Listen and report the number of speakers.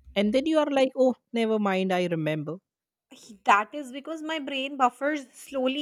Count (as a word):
two